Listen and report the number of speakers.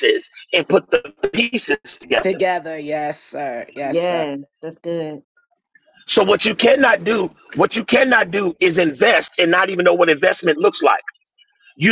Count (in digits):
3